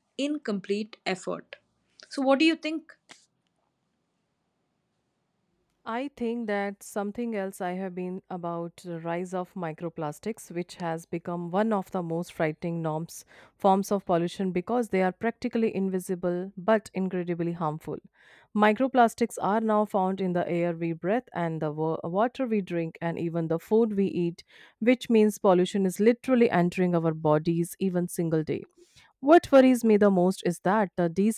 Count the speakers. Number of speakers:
2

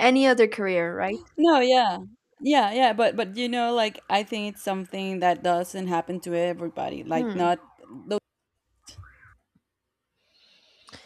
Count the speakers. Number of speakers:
2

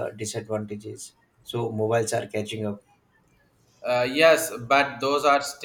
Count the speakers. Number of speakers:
2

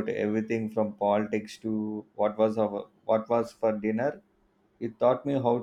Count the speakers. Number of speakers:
1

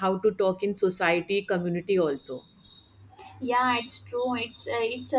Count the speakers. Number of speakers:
2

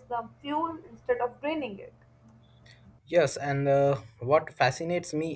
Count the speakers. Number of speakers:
2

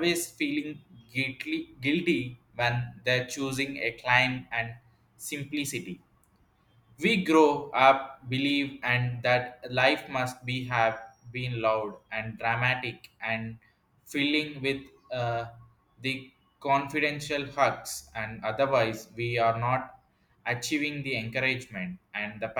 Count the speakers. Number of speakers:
1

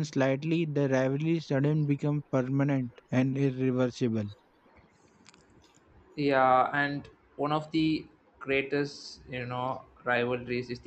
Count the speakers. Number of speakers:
2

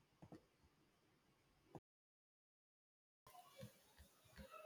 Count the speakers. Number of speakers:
0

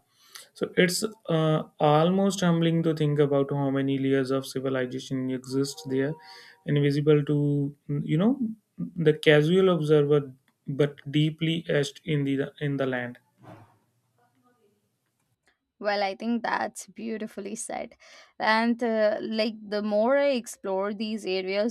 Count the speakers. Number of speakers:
2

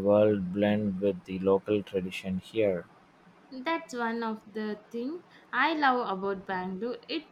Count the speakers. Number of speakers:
2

